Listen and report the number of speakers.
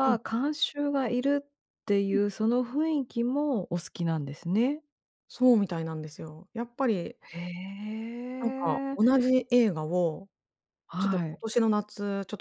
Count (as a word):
two